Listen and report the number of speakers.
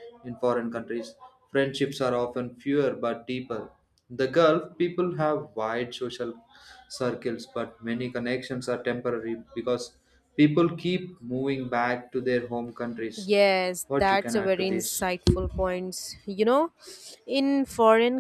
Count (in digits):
2